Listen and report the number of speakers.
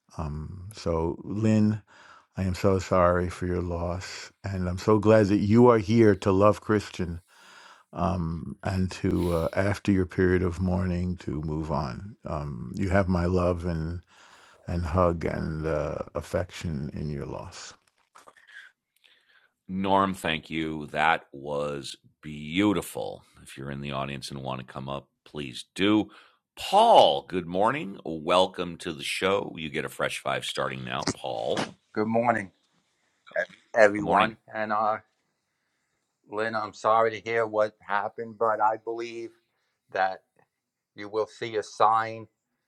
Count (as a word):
three